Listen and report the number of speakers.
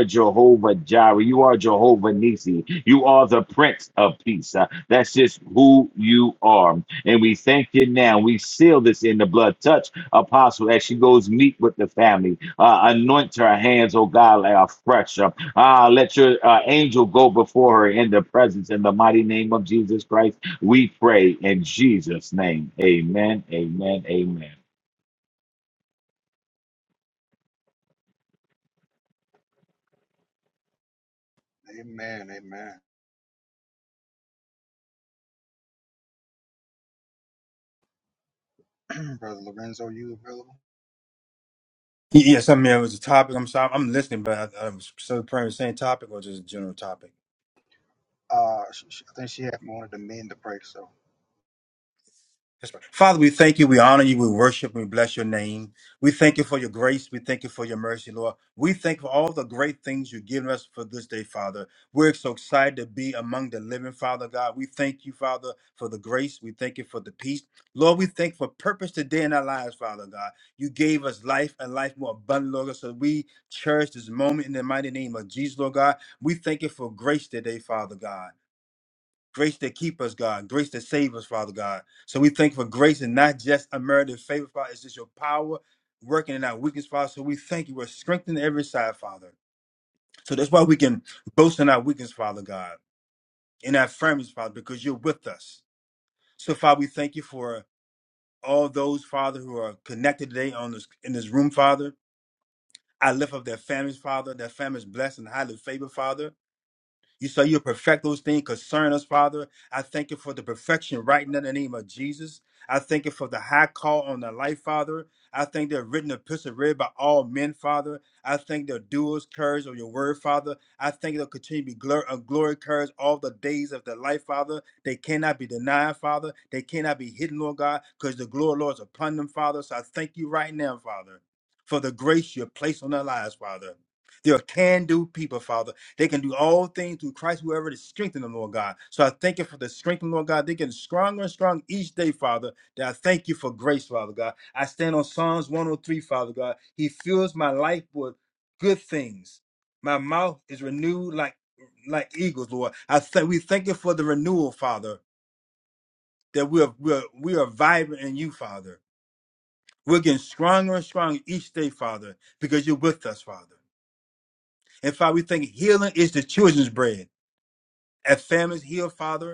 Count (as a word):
three